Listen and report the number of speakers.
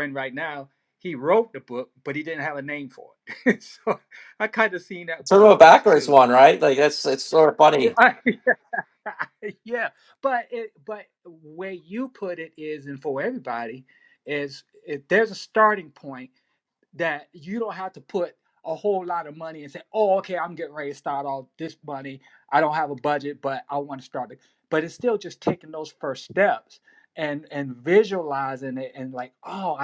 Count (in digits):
2